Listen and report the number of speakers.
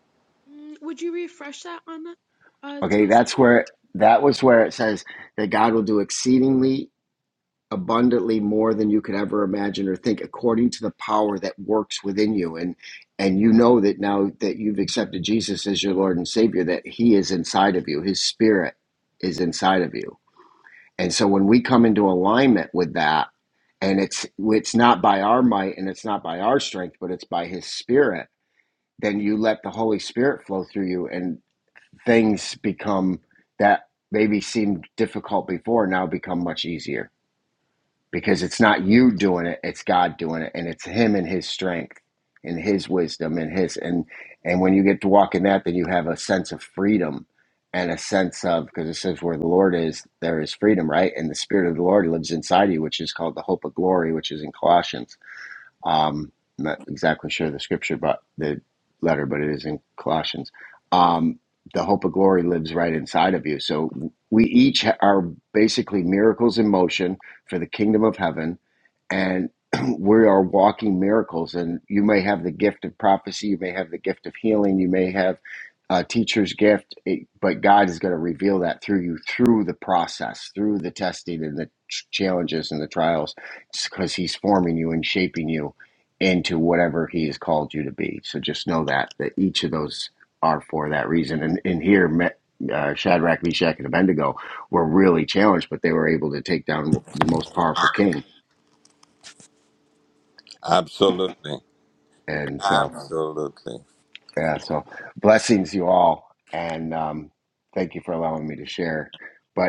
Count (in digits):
3